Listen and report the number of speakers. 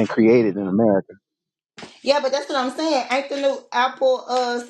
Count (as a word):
two